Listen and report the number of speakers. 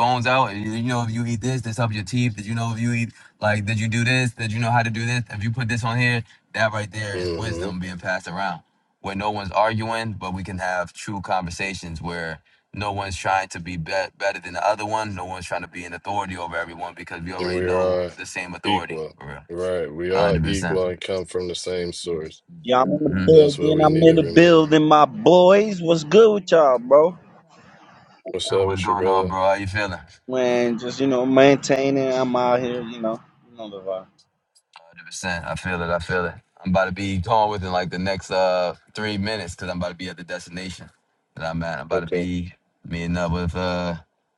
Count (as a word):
three